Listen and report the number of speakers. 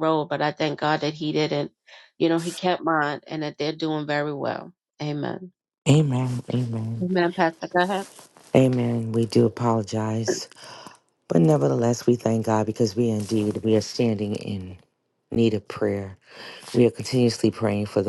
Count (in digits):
2